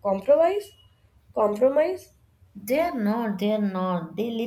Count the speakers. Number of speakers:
2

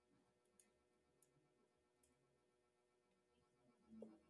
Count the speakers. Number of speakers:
0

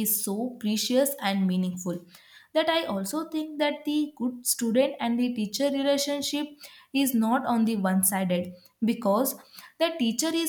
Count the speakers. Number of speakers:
1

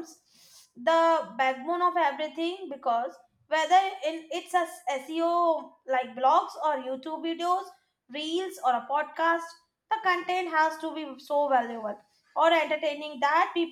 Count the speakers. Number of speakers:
1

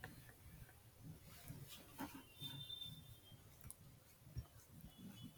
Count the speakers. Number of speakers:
0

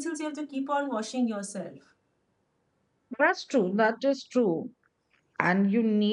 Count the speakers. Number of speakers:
2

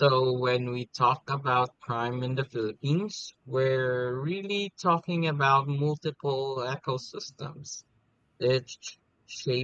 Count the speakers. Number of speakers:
1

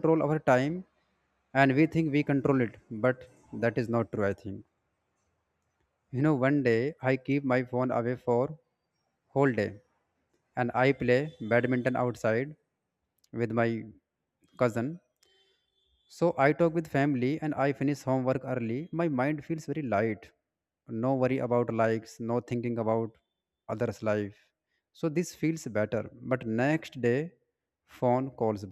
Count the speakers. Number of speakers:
1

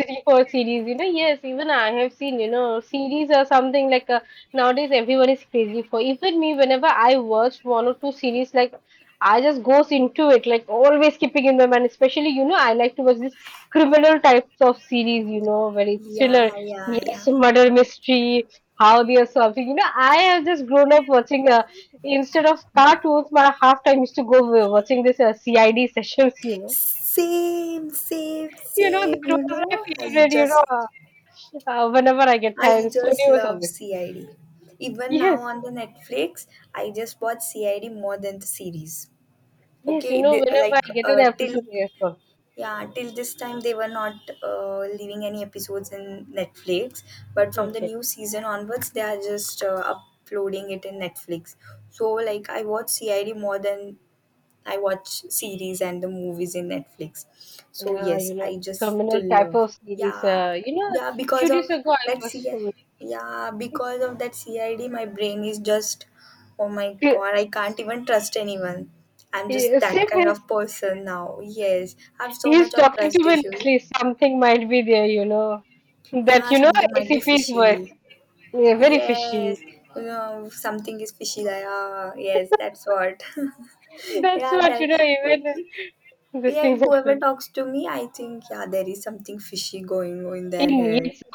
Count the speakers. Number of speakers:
2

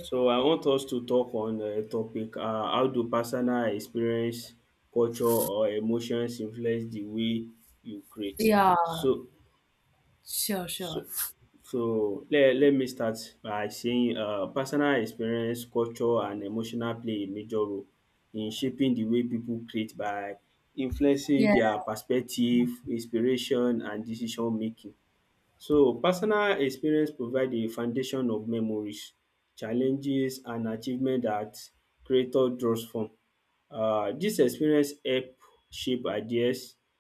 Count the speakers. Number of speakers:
2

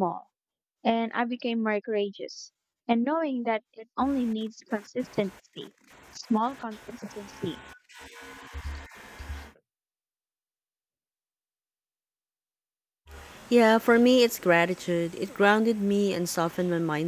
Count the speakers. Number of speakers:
2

